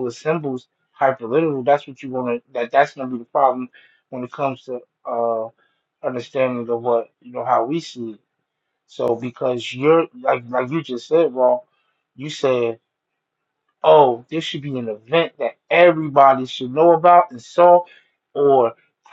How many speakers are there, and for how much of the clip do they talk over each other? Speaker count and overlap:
1, no overlap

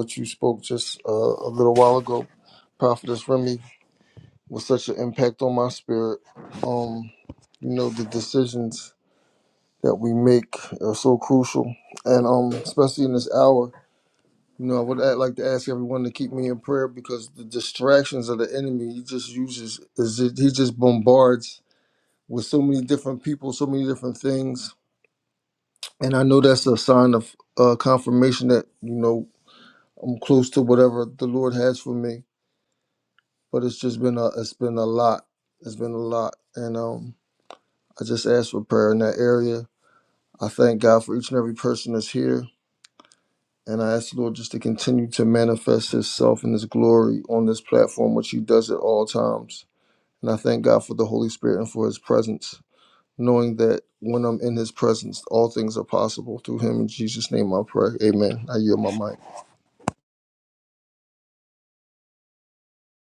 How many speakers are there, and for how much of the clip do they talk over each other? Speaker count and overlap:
1, no overlap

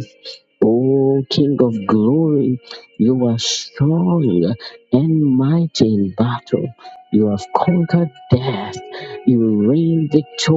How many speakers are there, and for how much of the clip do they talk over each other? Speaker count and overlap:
1, no overlap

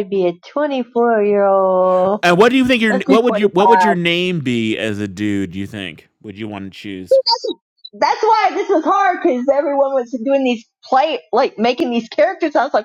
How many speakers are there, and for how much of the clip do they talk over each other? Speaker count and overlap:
2, about 6%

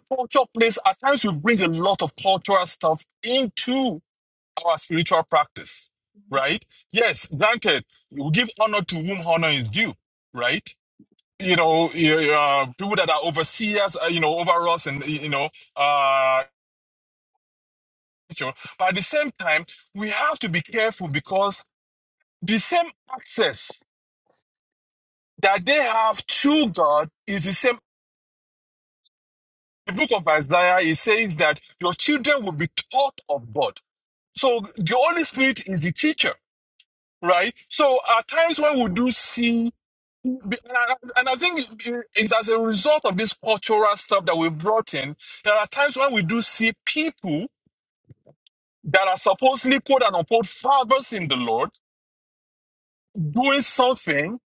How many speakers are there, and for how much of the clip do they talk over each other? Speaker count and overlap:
1, no overlap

